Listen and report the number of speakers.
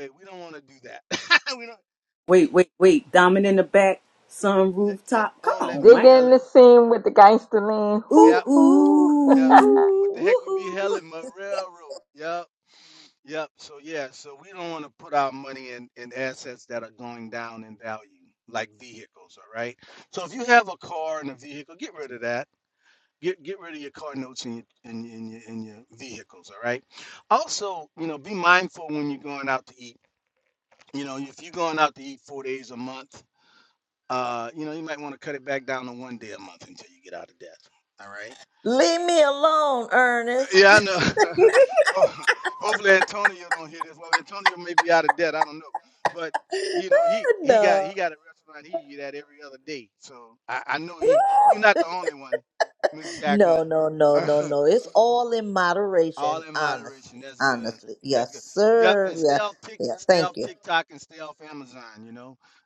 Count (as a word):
four